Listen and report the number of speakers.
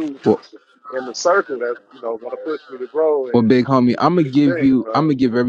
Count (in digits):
2